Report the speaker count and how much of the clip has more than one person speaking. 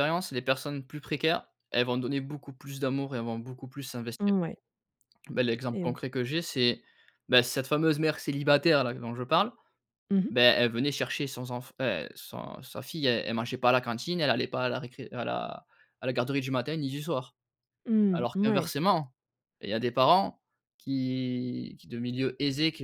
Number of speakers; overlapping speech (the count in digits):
2, about 4%